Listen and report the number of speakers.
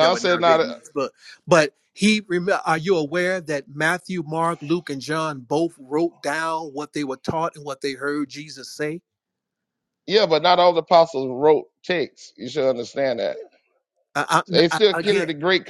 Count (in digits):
2